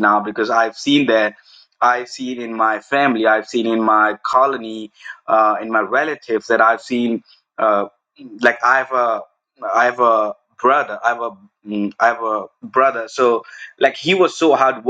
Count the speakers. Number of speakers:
1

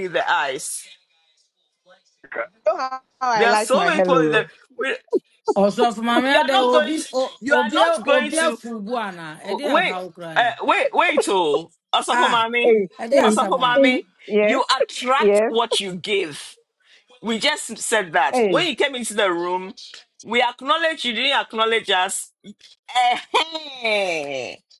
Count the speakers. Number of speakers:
3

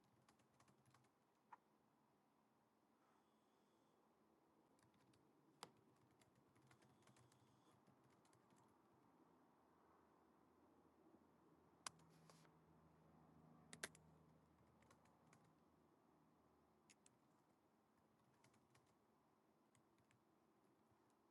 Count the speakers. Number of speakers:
0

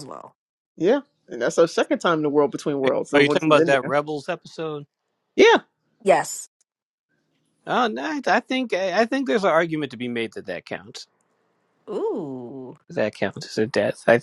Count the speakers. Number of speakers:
3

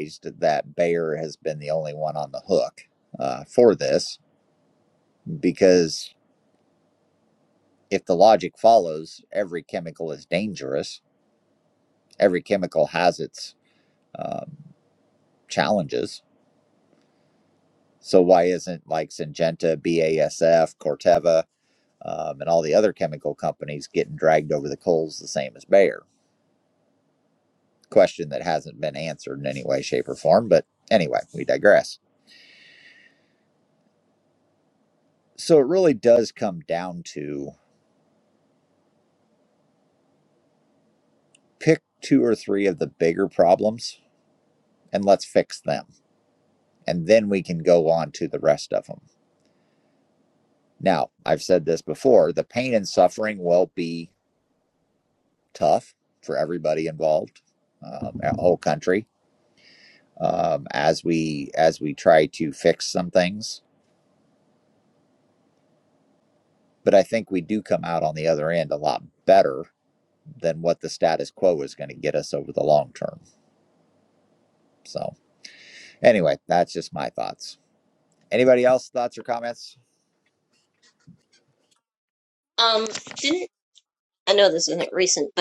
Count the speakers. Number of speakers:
2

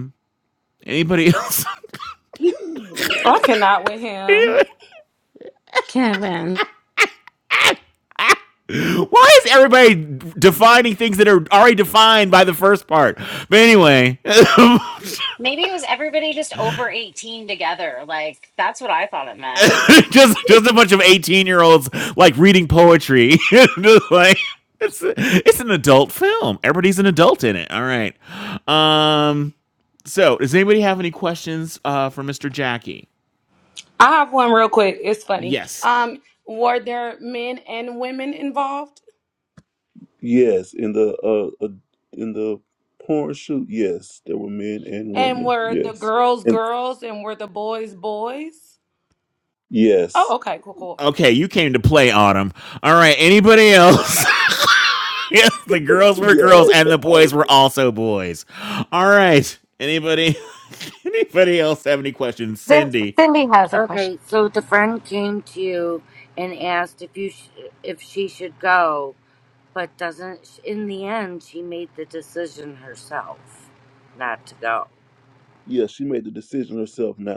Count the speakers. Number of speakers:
6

